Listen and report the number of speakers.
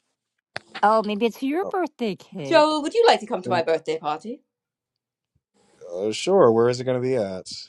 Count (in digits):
3